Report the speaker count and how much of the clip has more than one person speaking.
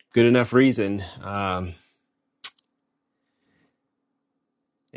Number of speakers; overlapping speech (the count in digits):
1, no overlap